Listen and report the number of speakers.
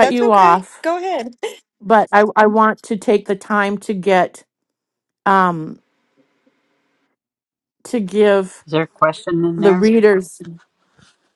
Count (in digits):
3